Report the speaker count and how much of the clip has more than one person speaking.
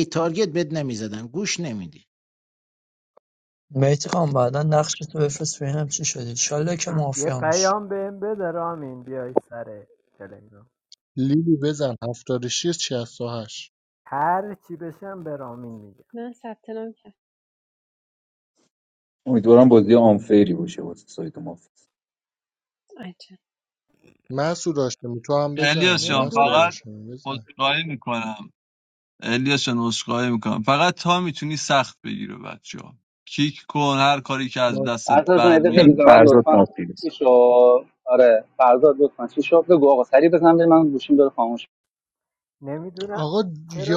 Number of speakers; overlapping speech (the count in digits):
8, about 9%